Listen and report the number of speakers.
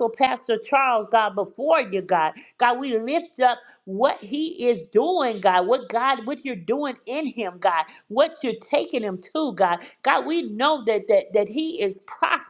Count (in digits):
1